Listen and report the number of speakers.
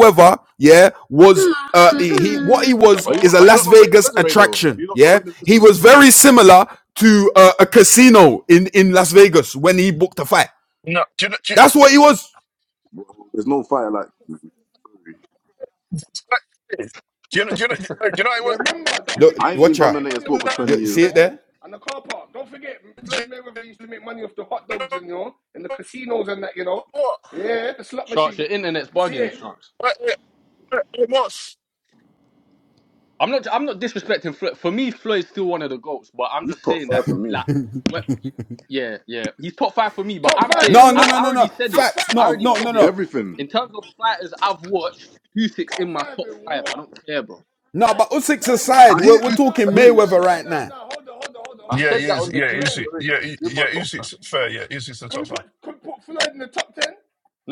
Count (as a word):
five